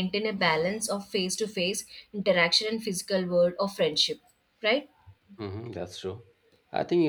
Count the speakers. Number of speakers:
two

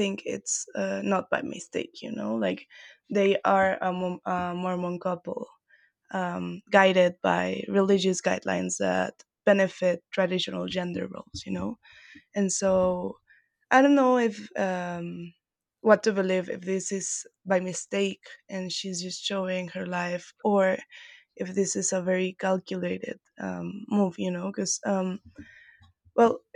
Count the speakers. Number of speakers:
one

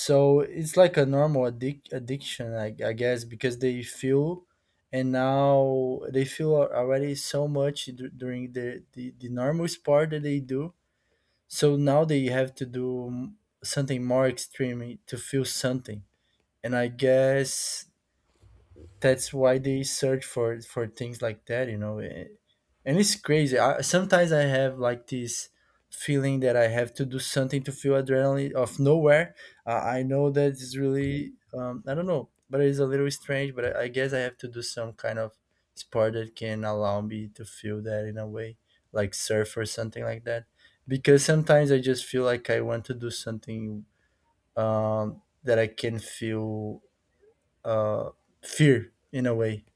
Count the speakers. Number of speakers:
one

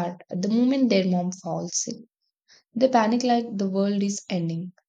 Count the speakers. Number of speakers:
one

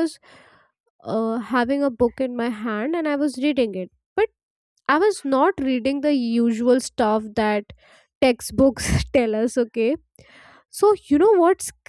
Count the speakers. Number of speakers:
one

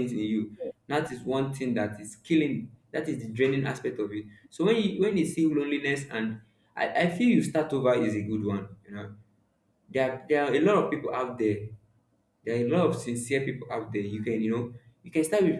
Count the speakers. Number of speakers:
one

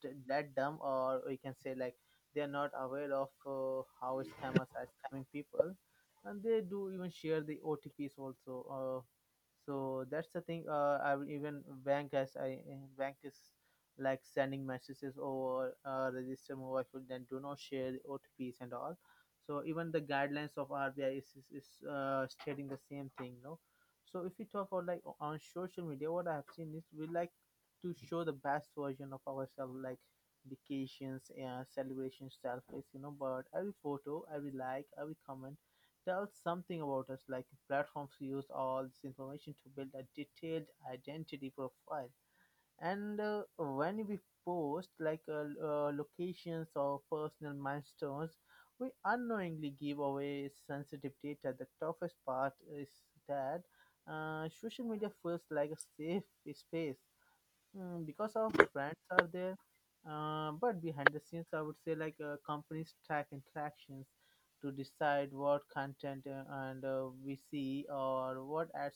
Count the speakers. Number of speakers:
one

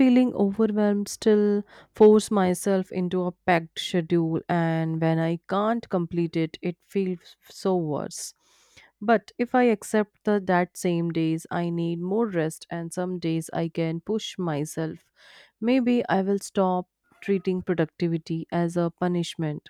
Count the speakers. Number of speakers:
one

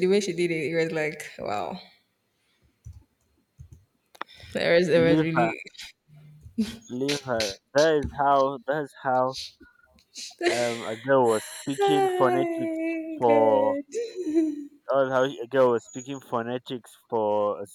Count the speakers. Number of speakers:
two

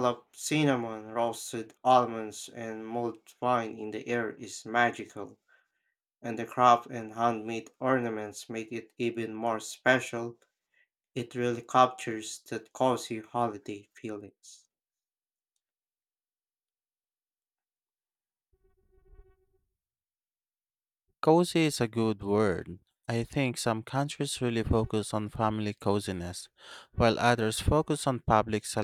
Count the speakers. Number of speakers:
two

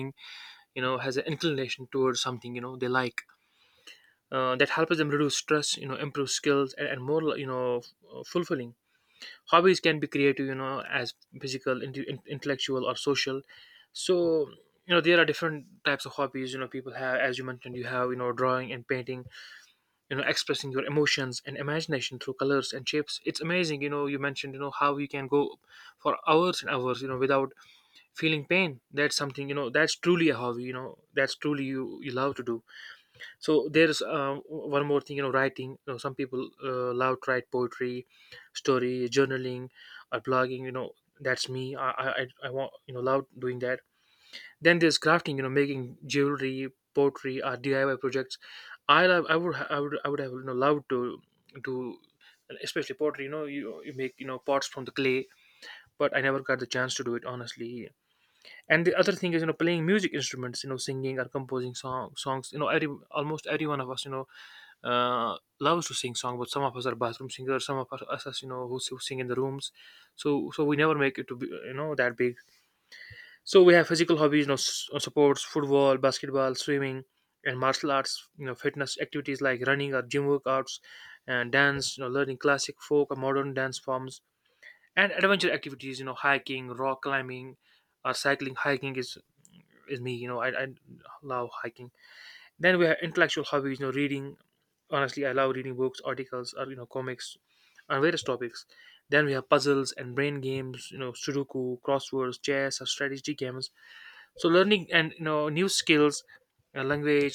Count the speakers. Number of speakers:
one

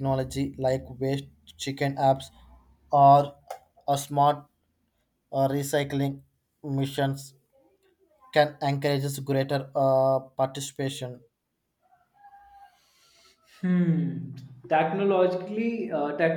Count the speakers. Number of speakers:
two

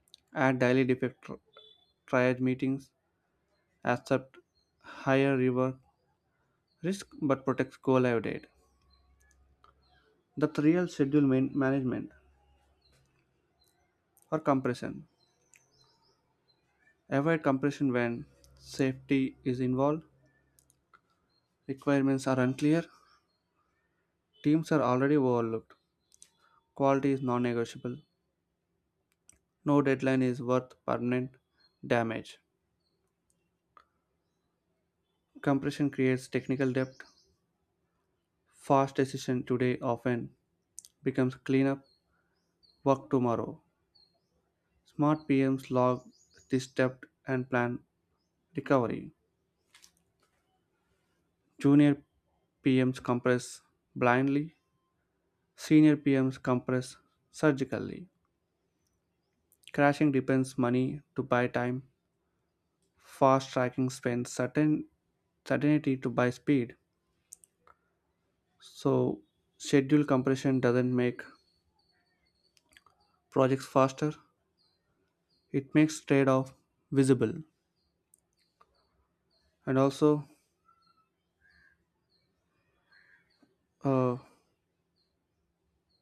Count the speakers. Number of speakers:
one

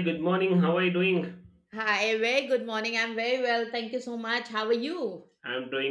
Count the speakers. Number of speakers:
two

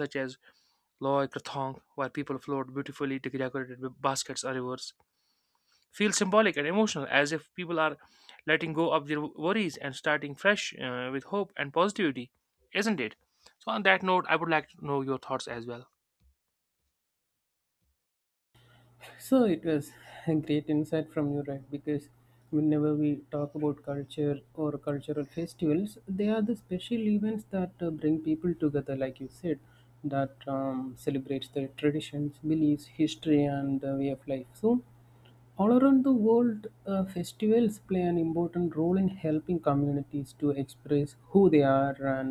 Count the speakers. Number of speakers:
two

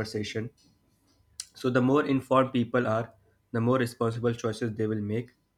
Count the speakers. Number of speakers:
one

